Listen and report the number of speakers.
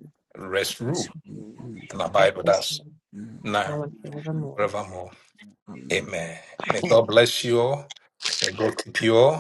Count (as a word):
three